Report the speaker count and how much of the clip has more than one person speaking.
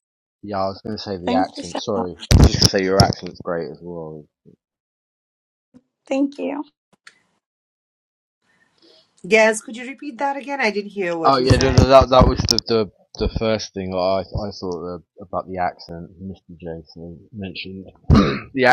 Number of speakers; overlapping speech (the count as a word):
three, about 8%